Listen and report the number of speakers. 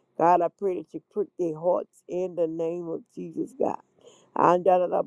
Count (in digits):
1